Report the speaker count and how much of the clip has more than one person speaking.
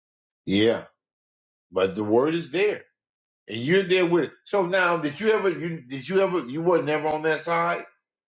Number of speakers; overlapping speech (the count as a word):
one, no overlap